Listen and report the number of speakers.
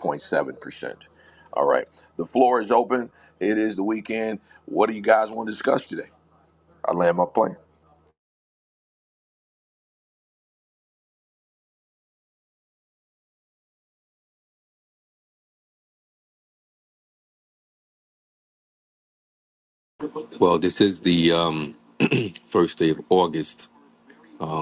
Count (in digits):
2